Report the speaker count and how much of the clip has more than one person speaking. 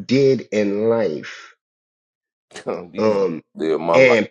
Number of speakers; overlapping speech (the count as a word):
two, about 12%